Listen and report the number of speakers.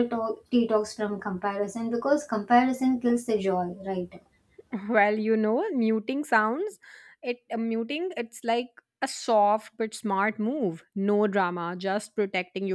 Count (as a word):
two